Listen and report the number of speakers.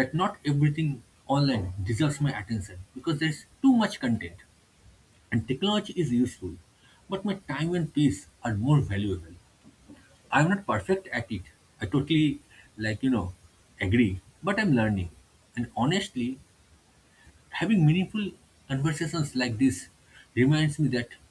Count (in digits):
1